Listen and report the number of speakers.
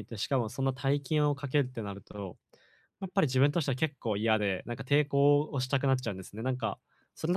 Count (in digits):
1